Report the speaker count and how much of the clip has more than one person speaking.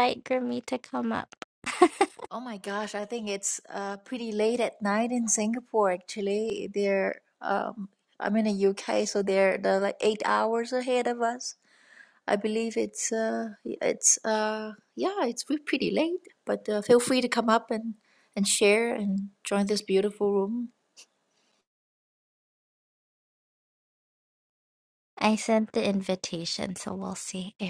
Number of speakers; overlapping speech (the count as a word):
two, no overlap